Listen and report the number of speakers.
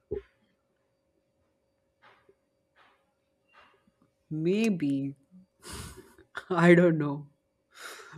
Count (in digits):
1